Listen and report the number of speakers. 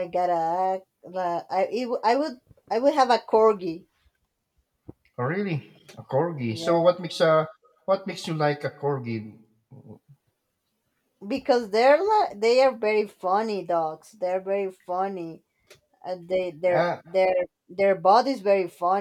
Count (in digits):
2